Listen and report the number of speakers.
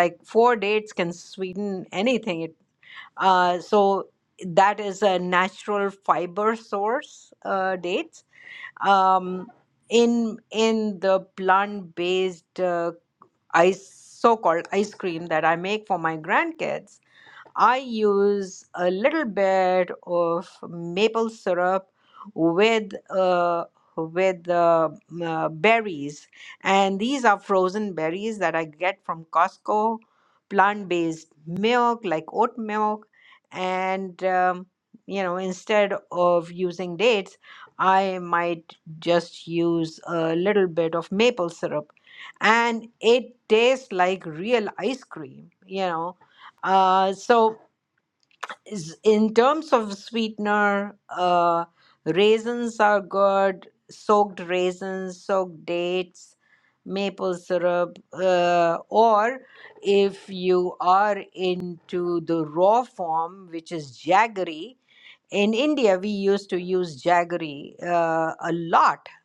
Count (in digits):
1